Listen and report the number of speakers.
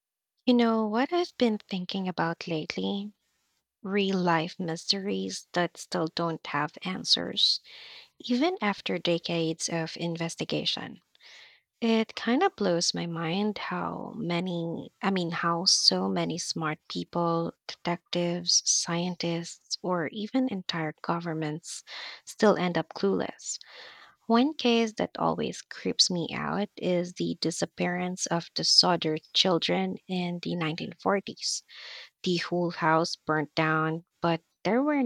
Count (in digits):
1